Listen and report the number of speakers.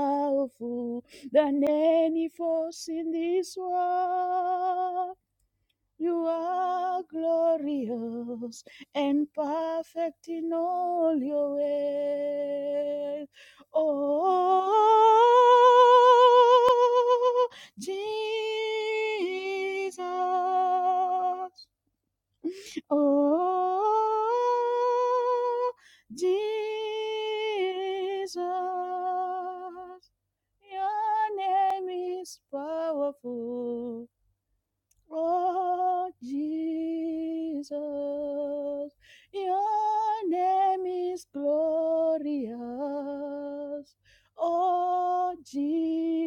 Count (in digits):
1